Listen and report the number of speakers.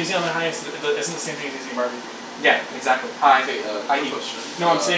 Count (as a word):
three